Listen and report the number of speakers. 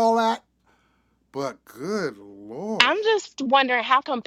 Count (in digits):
2